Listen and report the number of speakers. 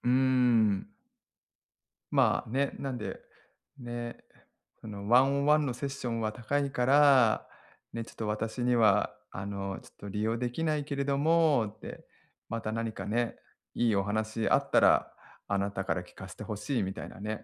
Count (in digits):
1